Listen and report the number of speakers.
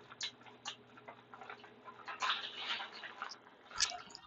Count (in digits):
0